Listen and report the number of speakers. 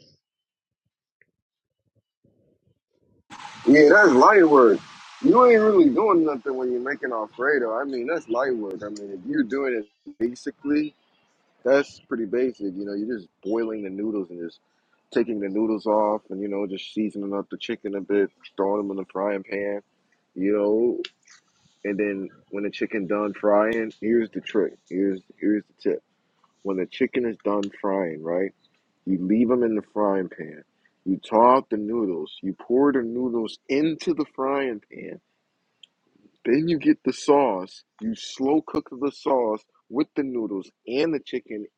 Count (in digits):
1